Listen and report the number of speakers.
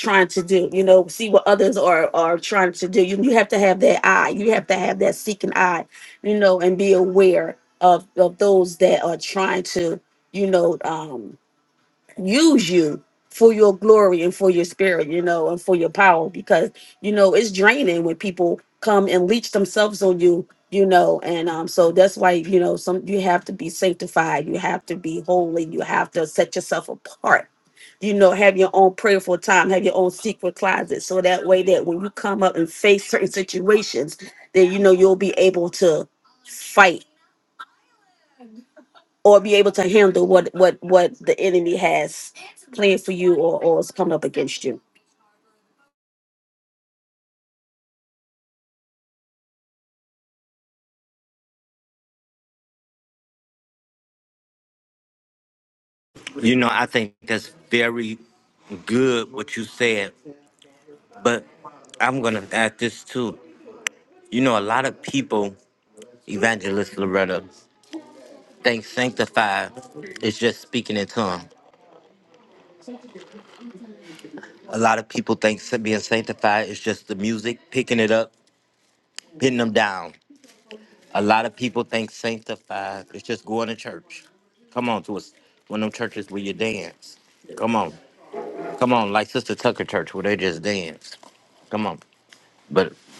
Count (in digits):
2